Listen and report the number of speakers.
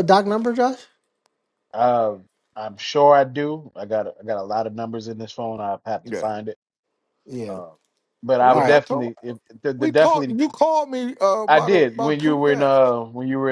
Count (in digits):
3